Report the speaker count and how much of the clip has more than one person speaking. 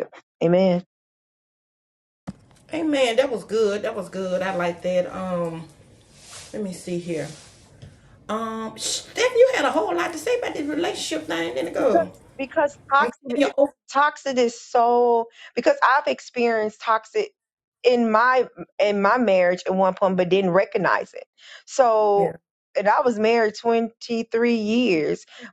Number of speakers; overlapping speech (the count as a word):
two, about 3%